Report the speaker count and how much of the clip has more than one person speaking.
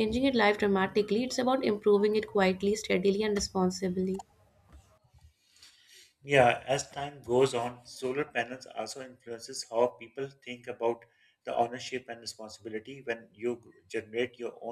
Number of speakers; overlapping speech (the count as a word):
two, no overlap